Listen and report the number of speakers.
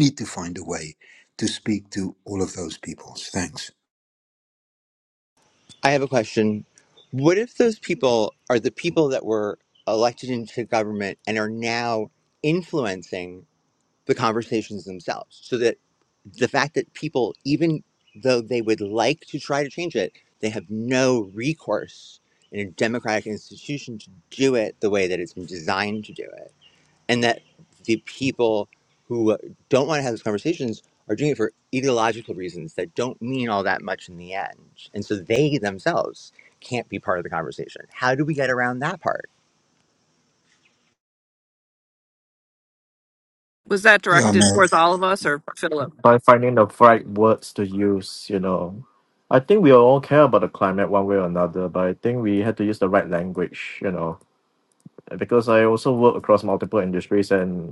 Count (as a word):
four